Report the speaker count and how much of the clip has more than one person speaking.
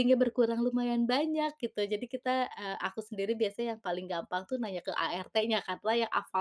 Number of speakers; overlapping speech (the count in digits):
1, no overlap